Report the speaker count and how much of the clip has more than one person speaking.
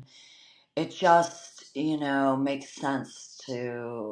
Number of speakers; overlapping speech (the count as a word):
one, no overlap